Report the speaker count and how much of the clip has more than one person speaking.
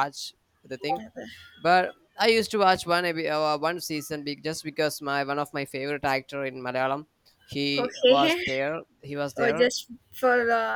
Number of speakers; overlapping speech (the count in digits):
2, about 10%